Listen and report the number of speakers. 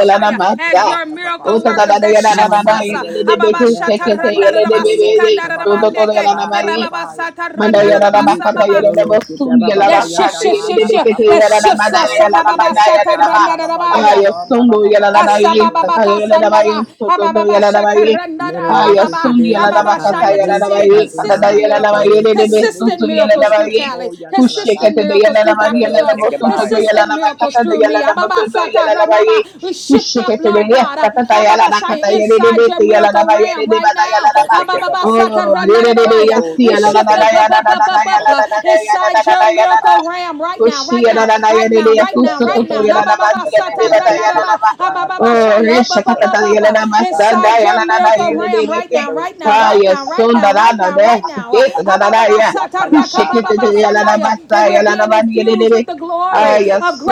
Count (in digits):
3